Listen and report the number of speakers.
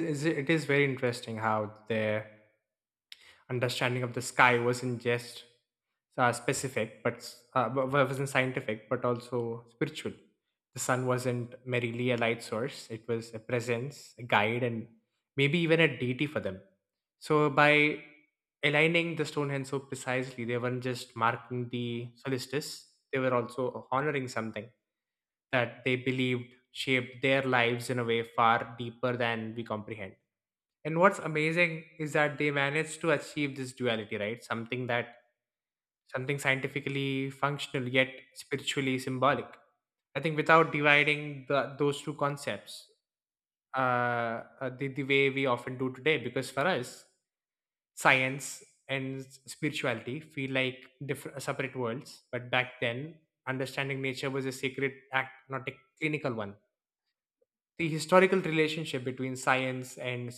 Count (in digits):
1